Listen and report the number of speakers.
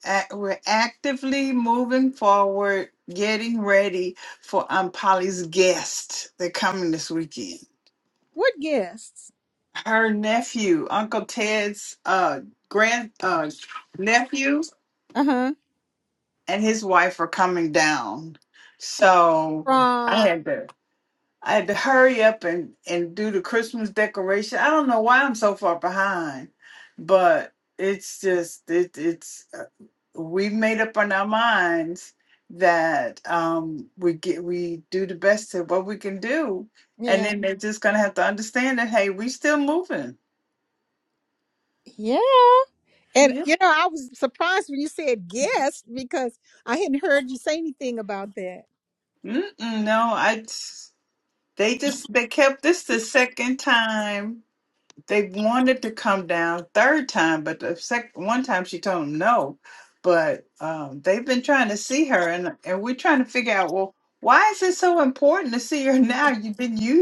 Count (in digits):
2